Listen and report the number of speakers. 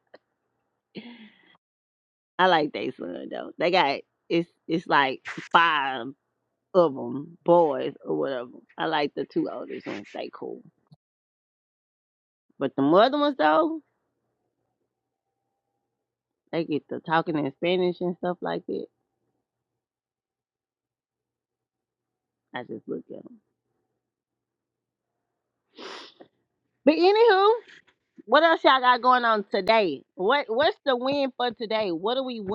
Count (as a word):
one